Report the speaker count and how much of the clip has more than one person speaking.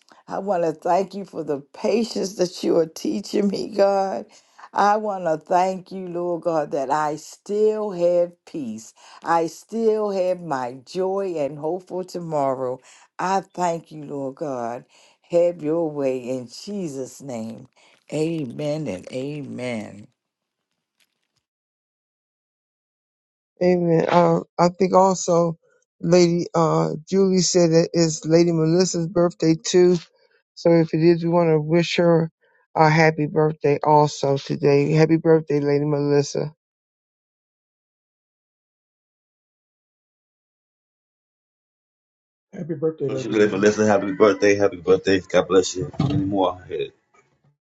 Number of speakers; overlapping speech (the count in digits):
4, about 2%